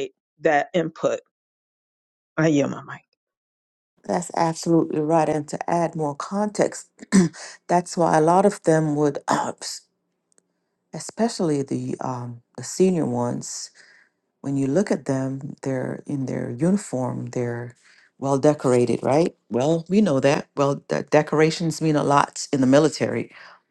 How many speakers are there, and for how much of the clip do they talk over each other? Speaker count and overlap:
2, no overlap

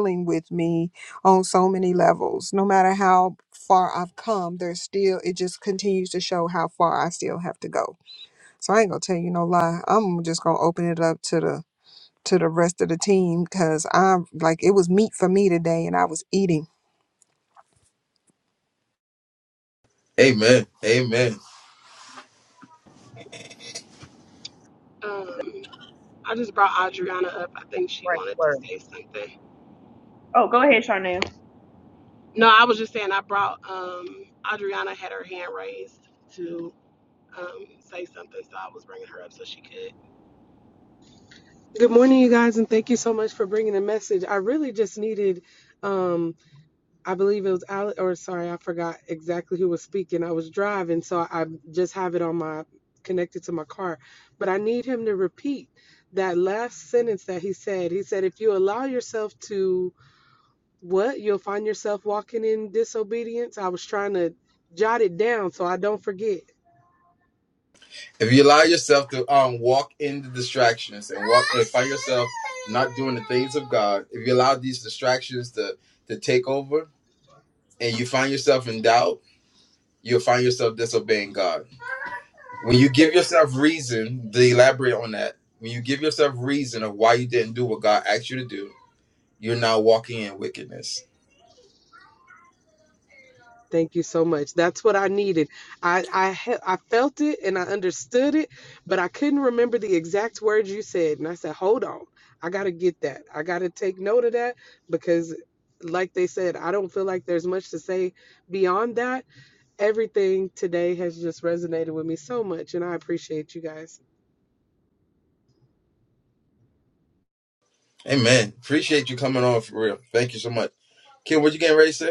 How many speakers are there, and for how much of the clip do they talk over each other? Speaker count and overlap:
5, about 1%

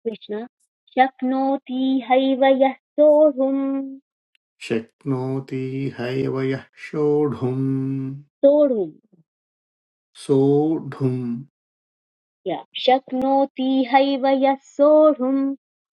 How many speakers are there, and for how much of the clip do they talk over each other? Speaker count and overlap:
2, no overlap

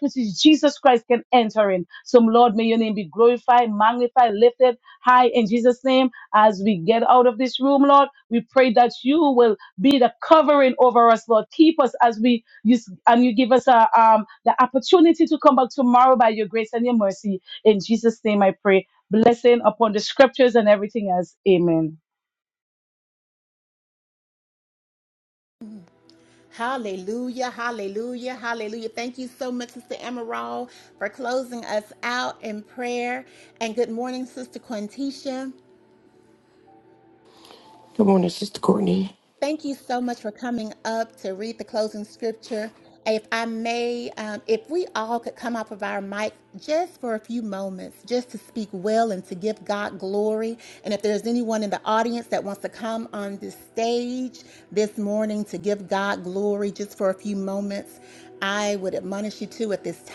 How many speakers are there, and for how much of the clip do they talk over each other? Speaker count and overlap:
3, no overlap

